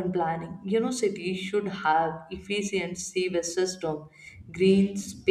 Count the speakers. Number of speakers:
1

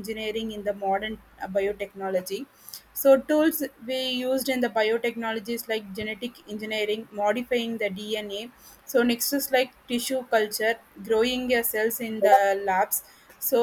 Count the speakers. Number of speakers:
1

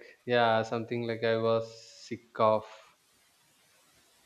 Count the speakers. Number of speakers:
1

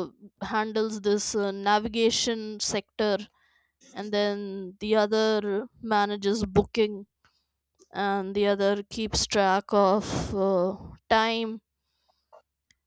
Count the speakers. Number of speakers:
1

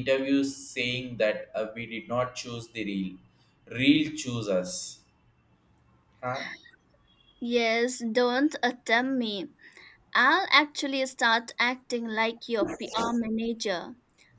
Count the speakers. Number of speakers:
2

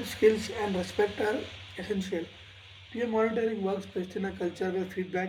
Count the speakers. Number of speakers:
1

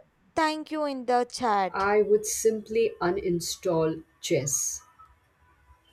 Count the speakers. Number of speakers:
2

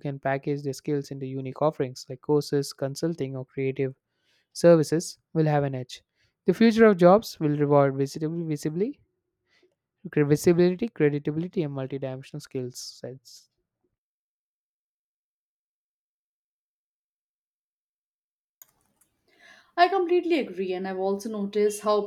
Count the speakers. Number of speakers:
2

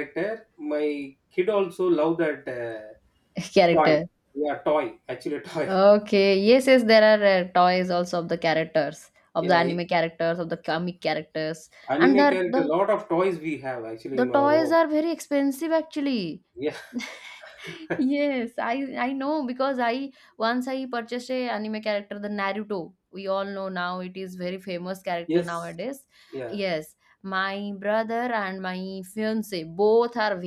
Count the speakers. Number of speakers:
2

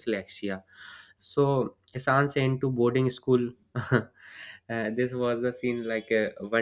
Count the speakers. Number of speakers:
1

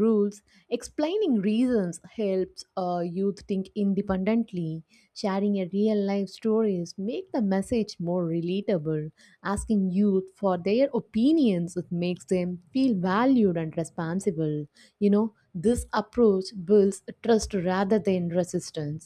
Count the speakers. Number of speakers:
1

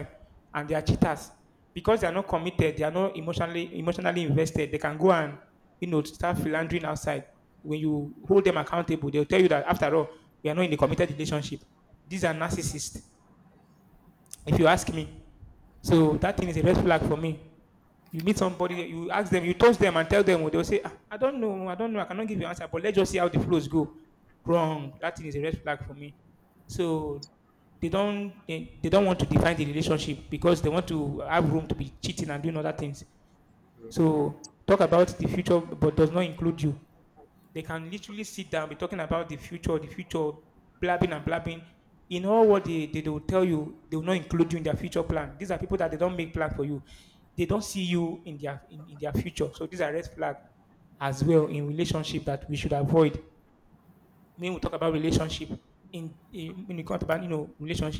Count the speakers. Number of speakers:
1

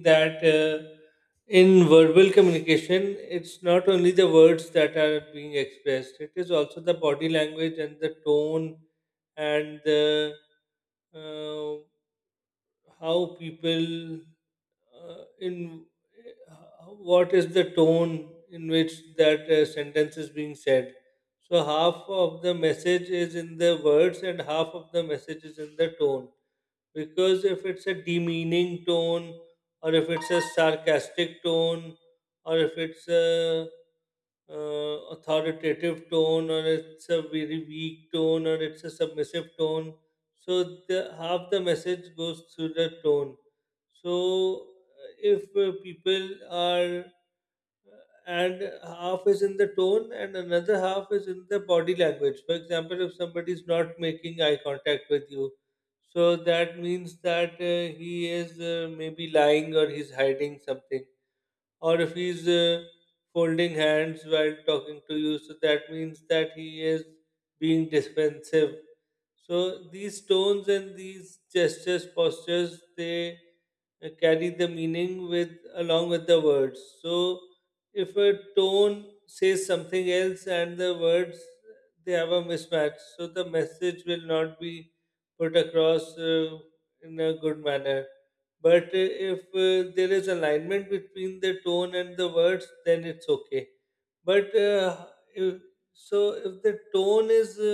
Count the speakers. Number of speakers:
1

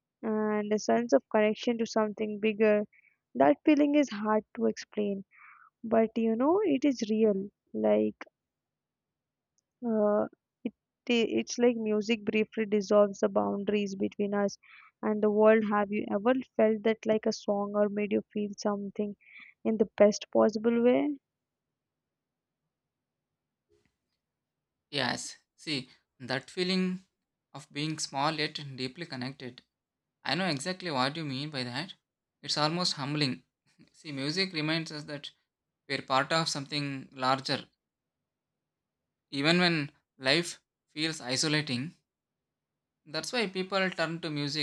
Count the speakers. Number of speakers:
2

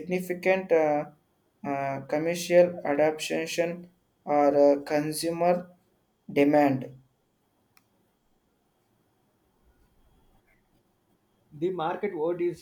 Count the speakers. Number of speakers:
2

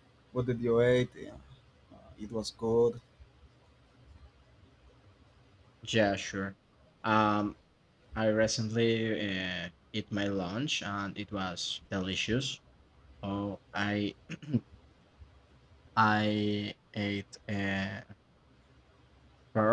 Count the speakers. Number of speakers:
2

